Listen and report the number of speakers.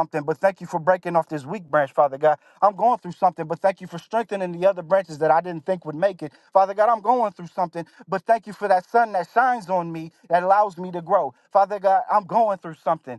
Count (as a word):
one